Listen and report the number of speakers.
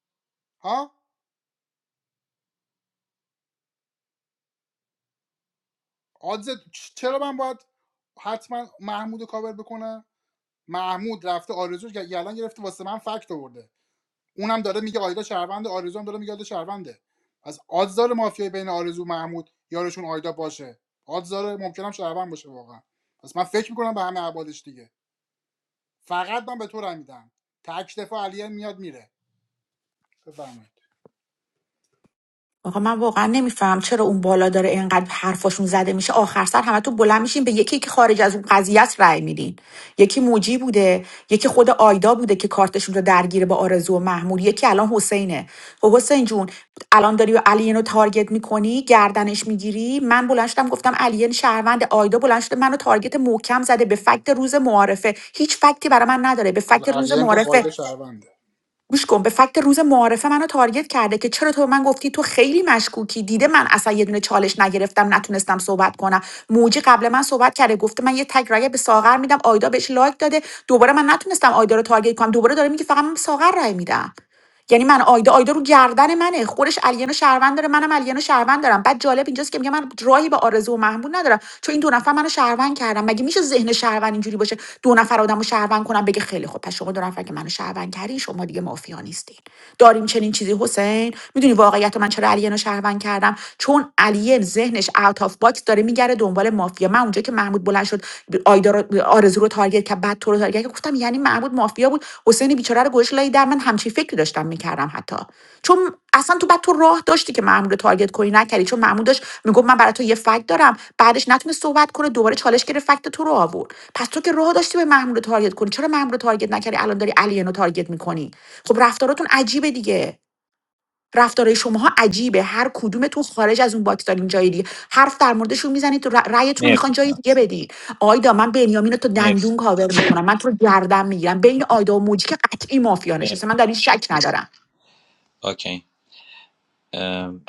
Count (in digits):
3